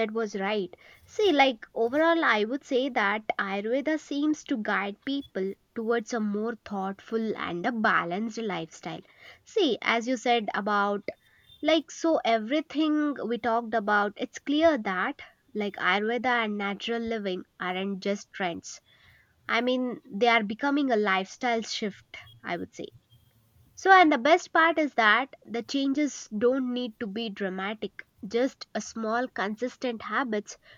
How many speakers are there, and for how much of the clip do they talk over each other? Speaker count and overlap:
one, no overlap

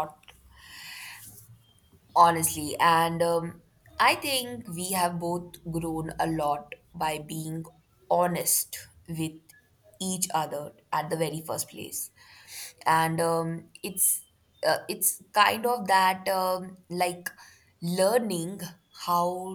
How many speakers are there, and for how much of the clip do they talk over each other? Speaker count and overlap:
one, no overlap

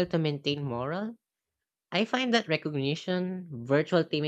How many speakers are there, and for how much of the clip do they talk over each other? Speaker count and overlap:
one, no overlap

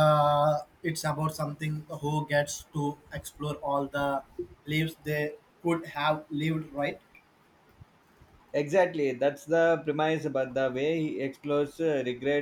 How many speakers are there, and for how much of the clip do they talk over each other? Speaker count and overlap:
two, no overlap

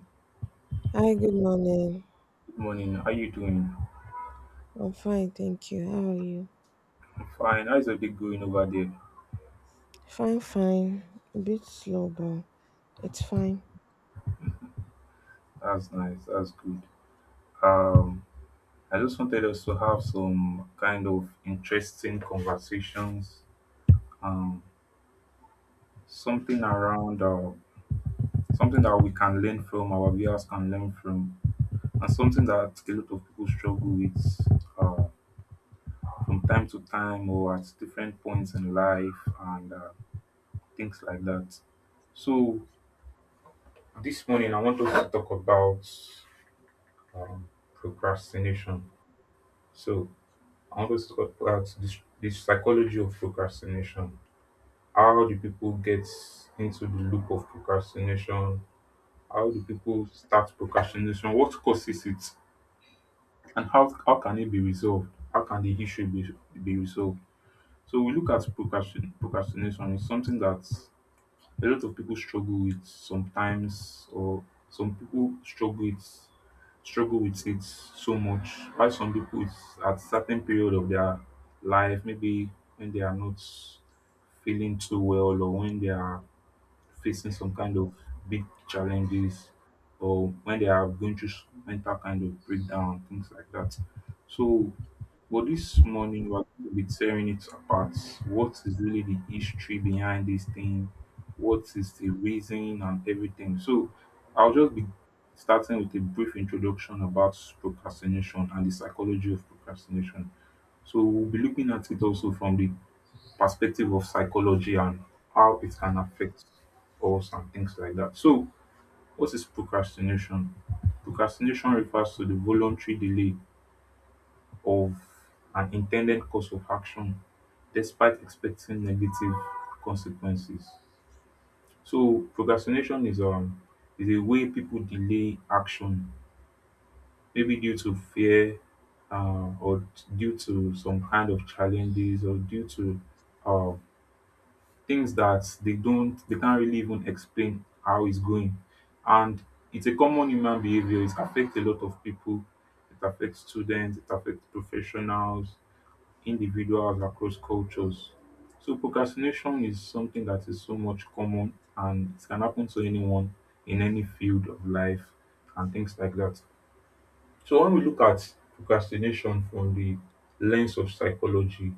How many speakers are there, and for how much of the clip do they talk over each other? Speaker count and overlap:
two, no overlap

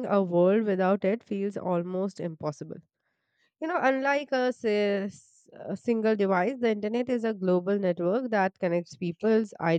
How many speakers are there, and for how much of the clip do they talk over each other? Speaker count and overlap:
one, no overlap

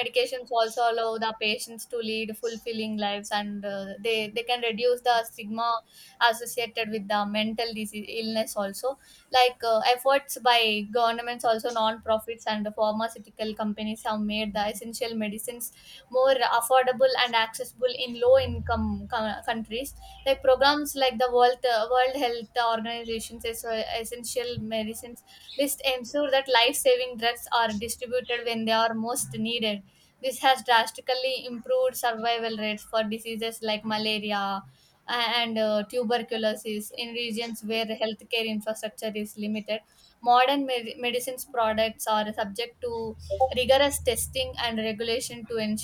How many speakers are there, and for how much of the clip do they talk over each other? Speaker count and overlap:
one, no overlap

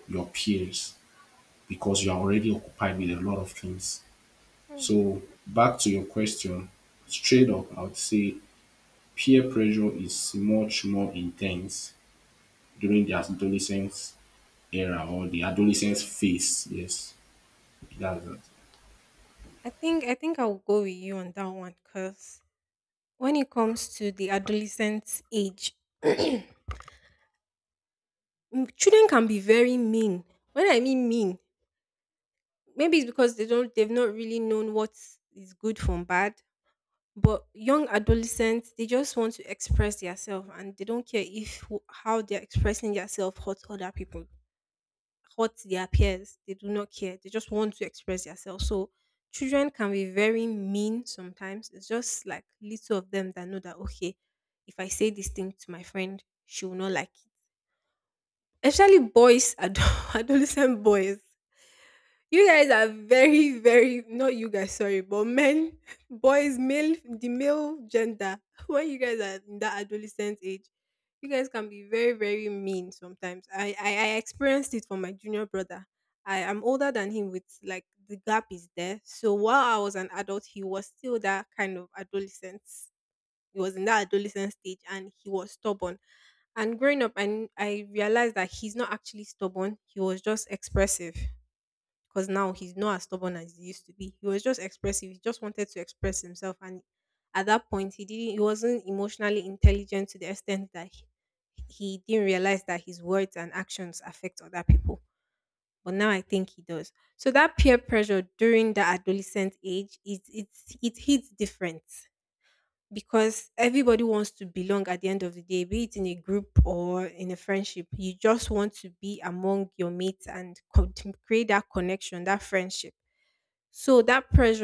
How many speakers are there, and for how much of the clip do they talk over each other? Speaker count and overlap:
two, no overlap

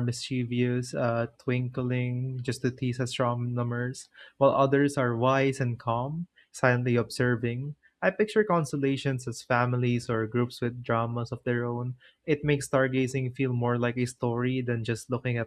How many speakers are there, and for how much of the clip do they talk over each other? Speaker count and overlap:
one, no overlap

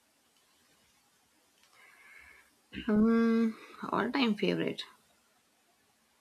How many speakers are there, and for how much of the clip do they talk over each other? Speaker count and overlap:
one, no overlap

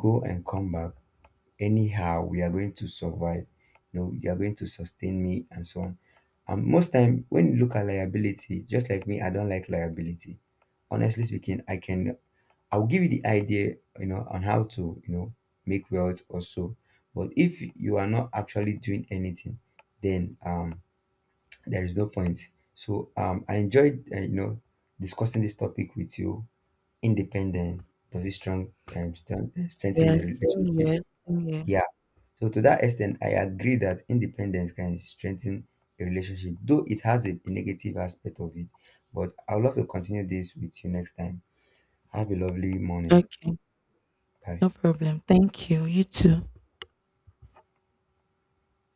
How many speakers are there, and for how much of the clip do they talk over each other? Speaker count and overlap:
two, about 2%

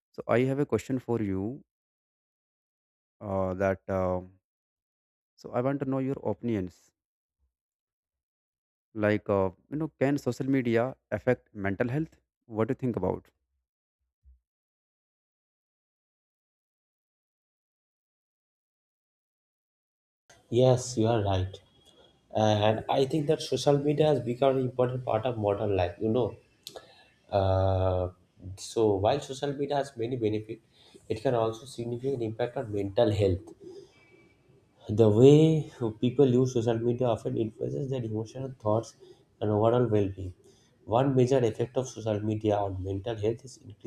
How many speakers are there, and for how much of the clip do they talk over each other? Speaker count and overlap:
two, no overlap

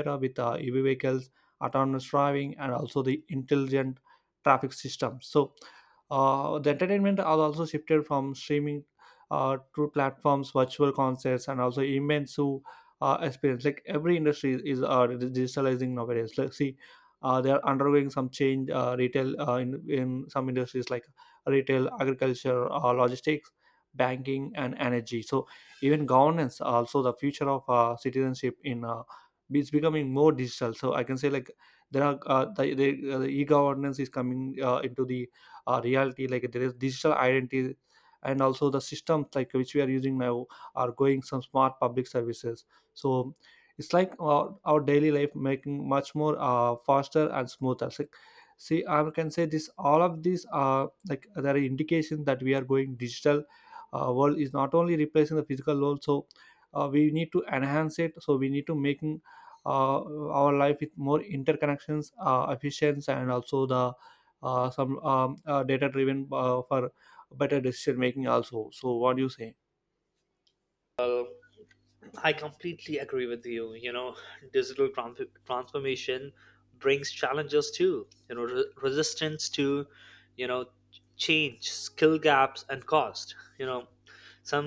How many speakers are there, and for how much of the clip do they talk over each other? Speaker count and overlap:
two, no overlap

